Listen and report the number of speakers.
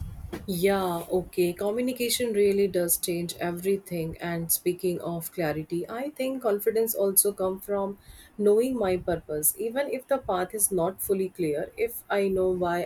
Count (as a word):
one